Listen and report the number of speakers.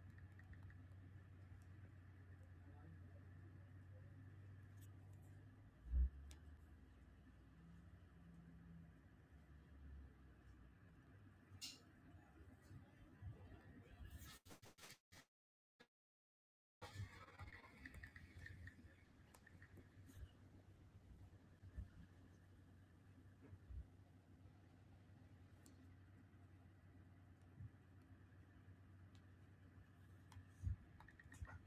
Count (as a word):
zero